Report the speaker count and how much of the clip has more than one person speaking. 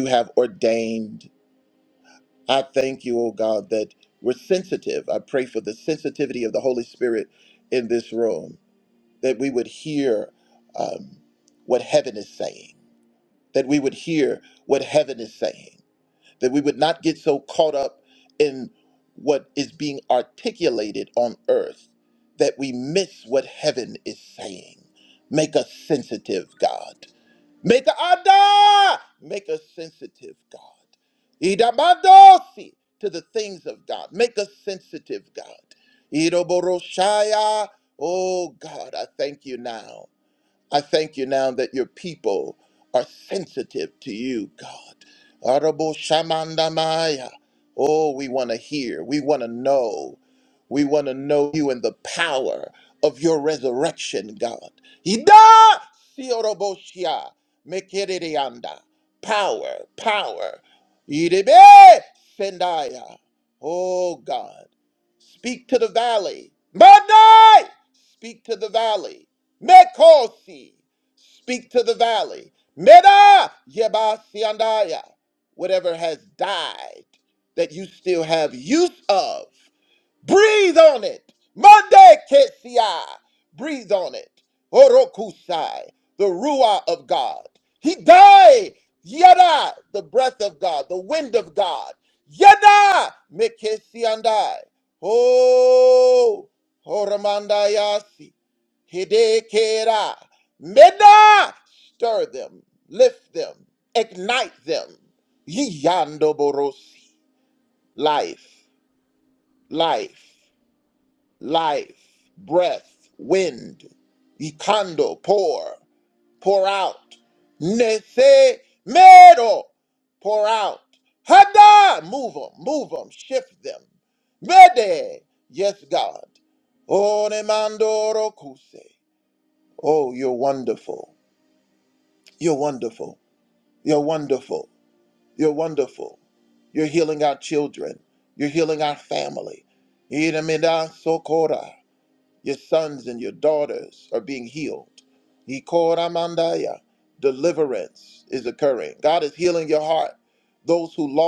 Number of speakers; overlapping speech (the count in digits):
1, no overlap